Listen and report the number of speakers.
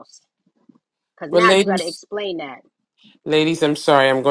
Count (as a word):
two